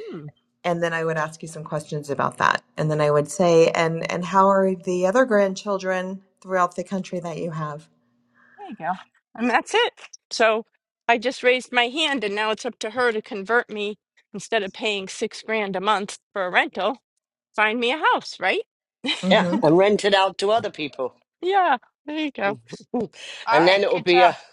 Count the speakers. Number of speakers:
three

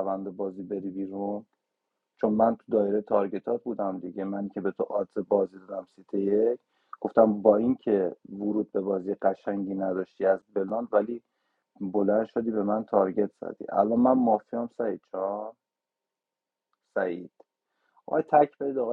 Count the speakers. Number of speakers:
one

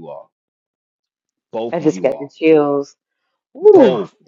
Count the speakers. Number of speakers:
two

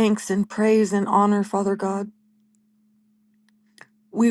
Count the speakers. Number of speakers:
one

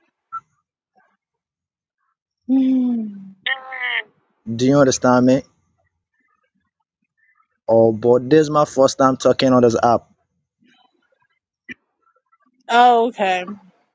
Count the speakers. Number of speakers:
two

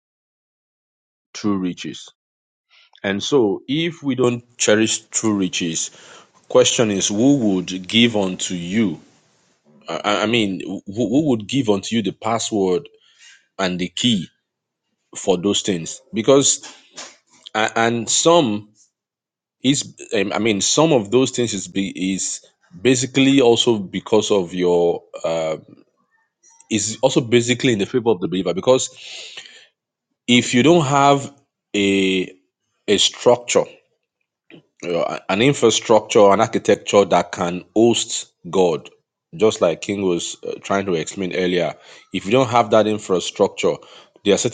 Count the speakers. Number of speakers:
one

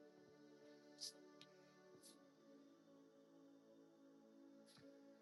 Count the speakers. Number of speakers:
zero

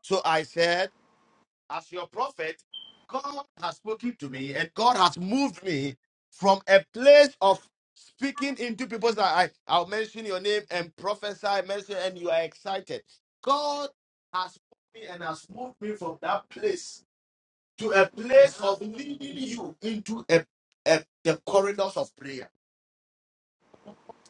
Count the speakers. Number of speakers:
one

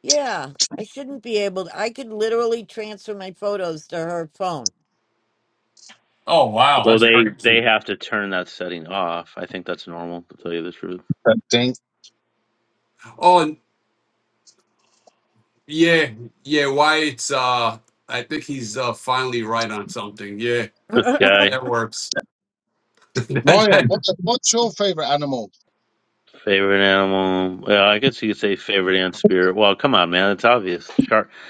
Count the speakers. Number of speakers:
four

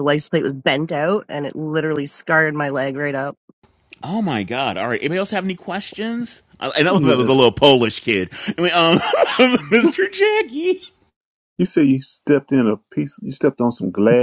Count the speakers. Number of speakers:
three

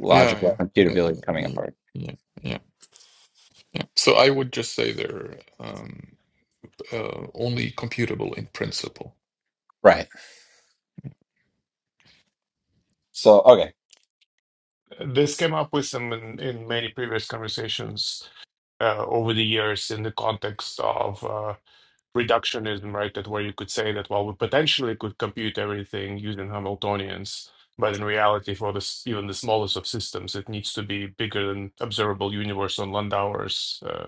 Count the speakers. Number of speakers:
three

